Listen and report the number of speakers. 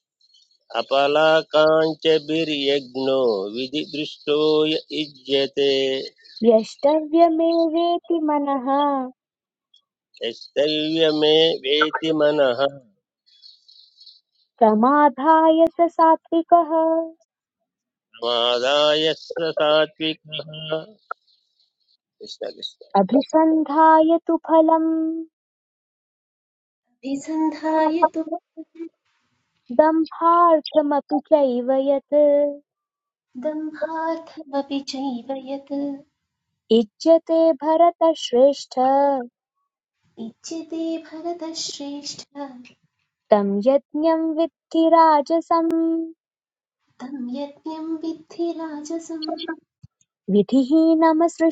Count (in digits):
3